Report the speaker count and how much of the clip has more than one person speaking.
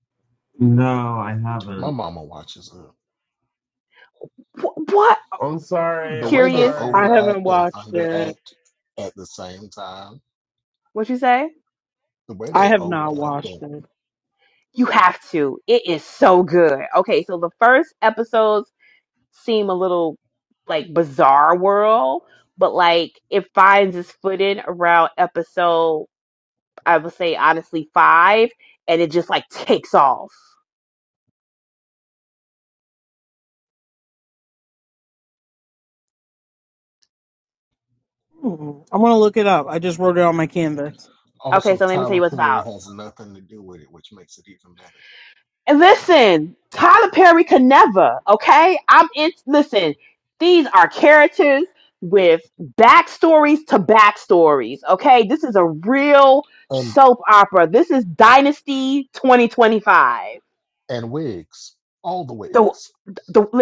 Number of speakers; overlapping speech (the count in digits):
4, about 7%